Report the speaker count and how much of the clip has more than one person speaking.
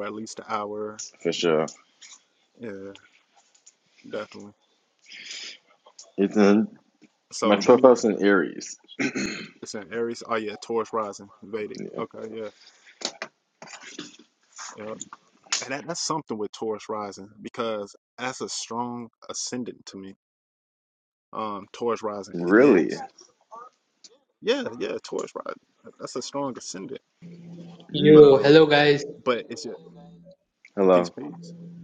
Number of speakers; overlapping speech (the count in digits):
3, about 7%